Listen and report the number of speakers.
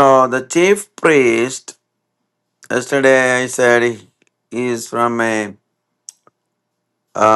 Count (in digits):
1